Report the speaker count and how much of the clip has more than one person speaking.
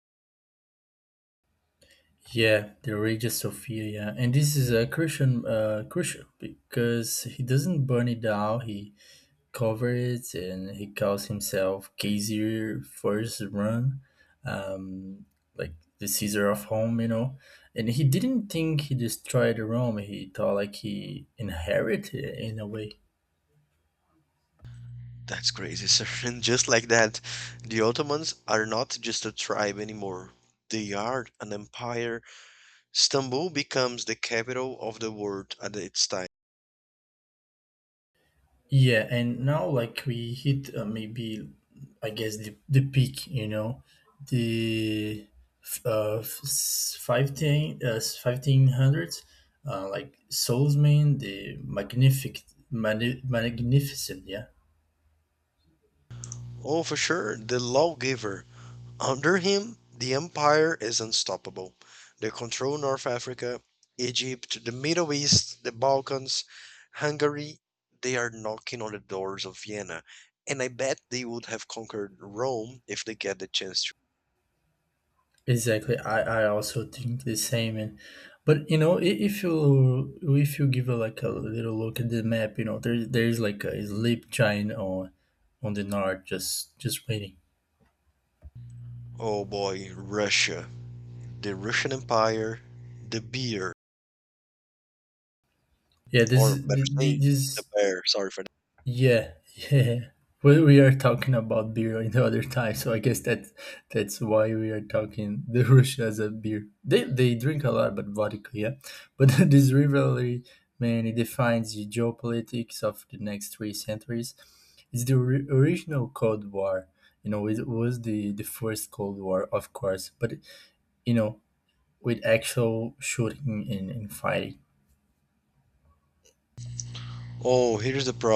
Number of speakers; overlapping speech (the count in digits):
2, about 1%